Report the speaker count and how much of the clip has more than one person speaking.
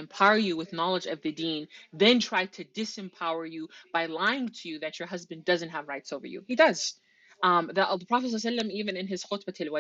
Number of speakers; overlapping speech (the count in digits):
1, no overlap